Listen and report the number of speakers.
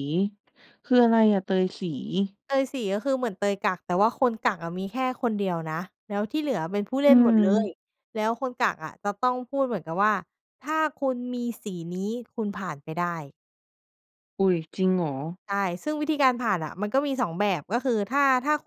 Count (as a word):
two